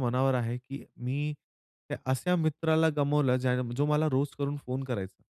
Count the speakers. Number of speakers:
1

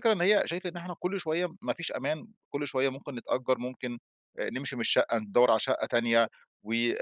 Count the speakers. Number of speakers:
1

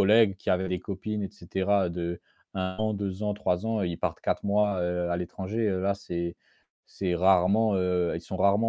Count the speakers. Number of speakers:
1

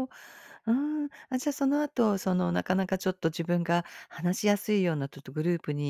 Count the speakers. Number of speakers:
1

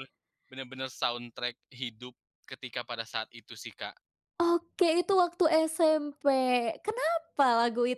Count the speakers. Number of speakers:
2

